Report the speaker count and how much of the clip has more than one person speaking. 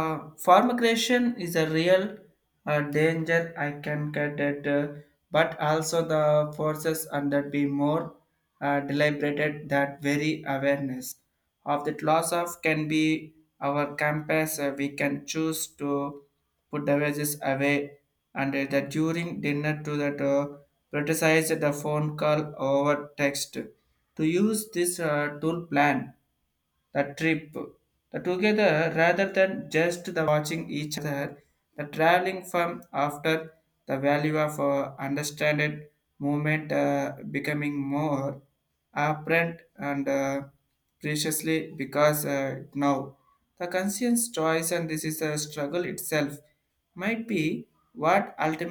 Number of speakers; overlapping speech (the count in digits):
1, no overlap